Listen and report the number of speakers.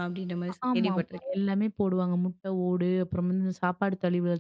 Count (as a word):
two